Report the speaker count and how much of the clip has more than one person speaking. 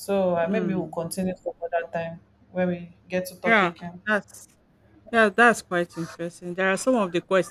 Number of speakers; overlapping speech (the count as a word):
two, about 10%